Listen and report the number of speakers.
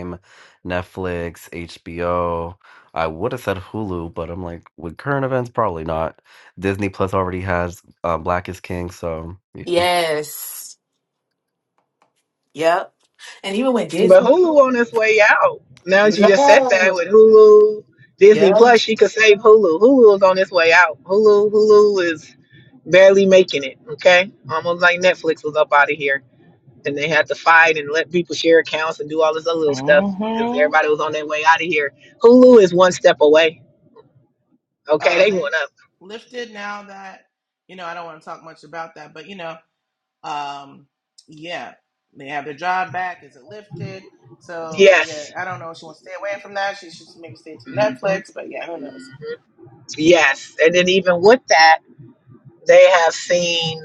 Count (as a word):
four